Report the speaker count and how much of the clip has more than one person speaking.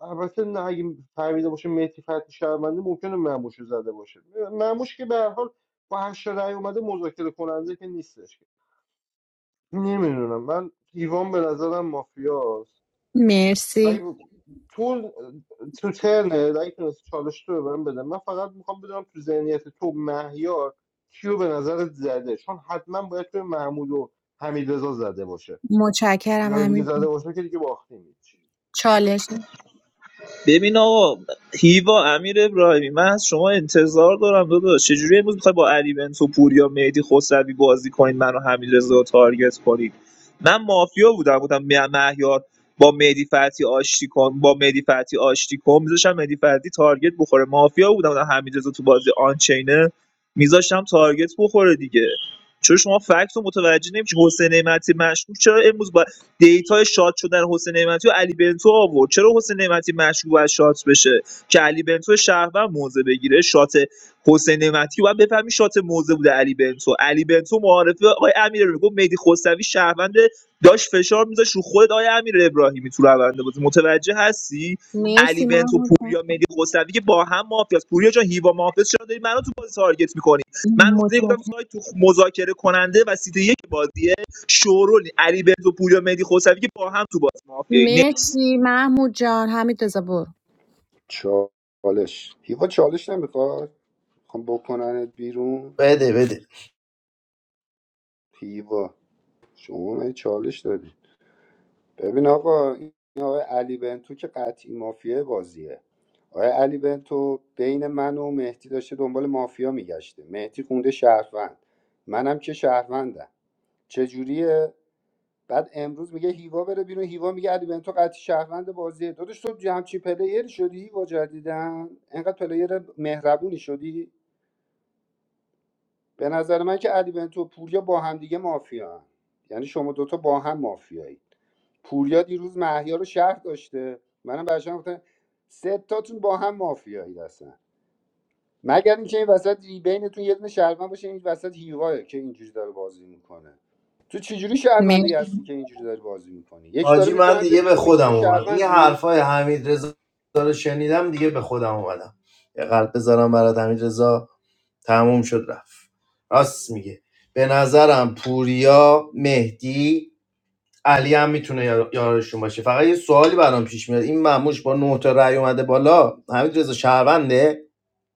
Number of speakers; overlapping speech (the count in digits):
5, about 3%